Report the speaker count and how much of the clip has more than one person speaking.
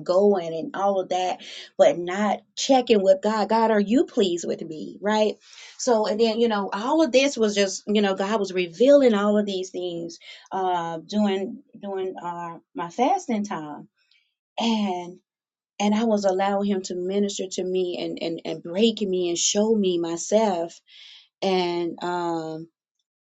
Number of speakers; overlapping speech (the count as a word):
one, no overlap